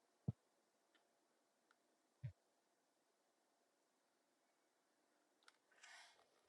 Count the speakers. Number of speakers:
0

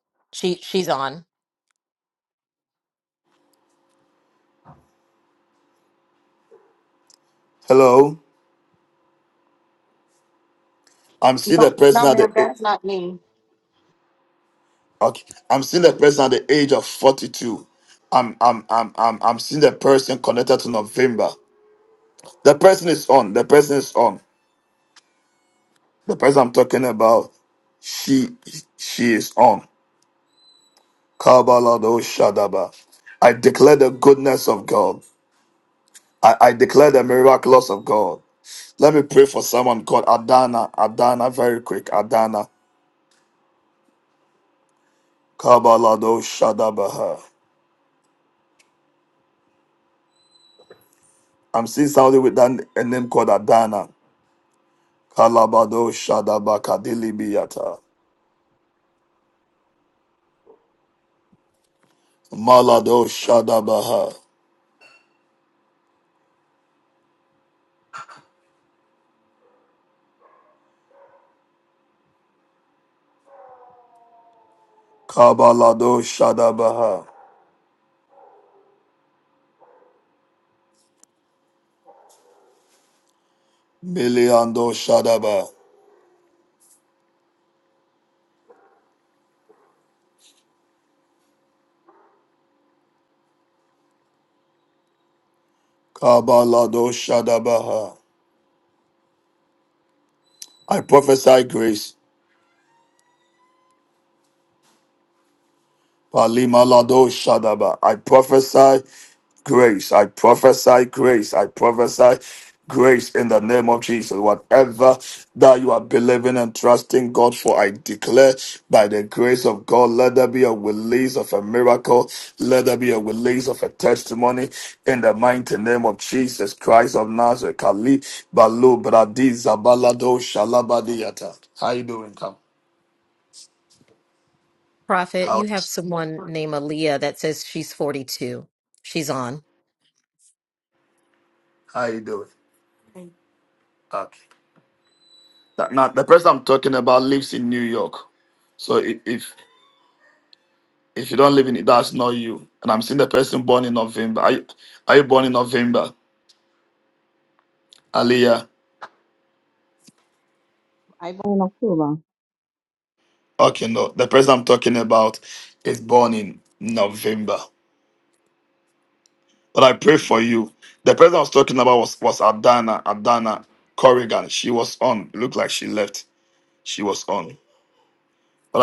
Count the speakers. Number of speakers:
4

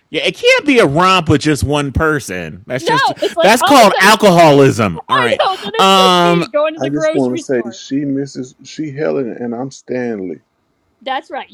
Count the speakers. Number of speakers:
3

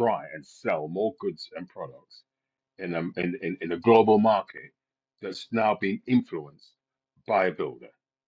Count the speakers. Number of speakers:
1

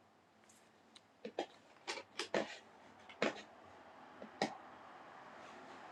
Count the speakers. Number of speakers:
0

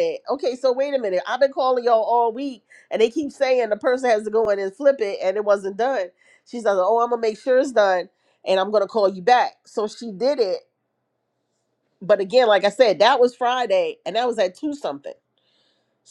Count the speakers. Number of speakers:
1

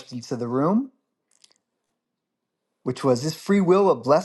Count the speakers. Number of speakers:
1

